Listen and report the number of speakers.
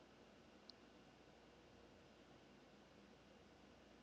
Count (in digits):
0